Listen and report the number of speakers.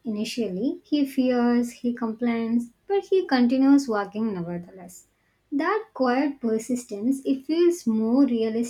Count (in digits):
1